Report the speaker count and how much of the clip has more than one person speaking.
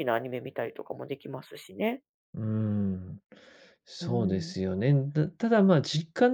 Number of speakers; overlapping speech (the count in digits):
2, about 7%